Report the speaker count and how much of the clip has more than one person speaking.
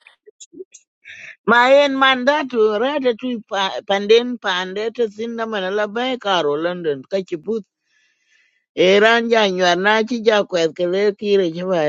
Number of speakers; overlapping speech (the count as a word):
one, no overlap